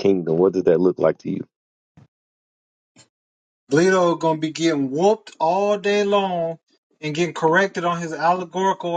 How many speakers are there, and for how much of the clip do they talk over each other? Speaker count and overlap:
two, no overlap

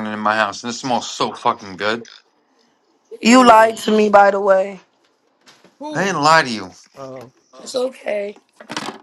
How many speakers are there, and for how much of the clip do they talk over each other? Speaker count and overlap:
three, about 8%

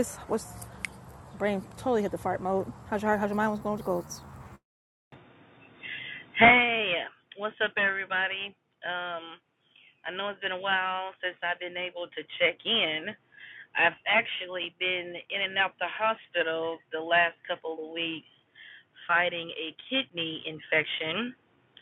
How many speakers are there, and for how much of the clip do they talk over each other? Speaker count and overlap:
two, no overlap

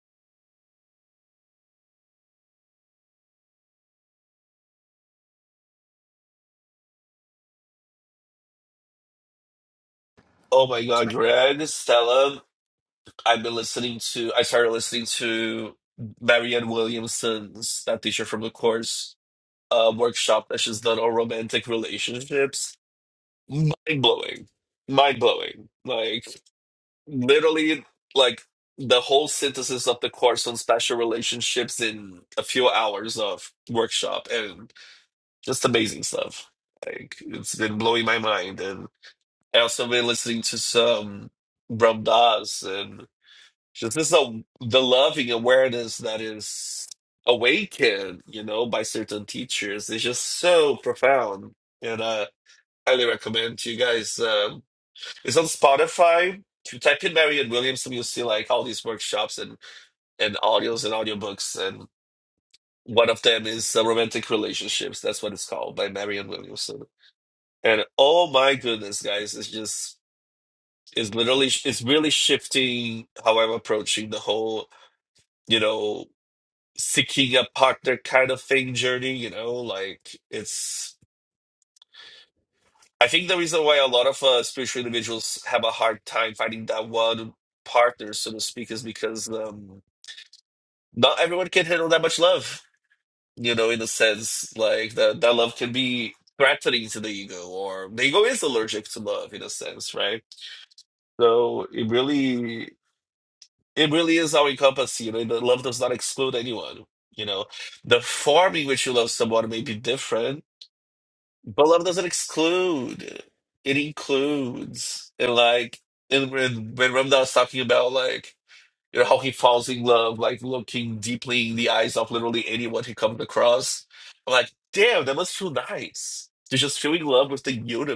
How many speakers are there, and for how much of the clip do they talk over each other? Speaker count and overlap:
one, no overlap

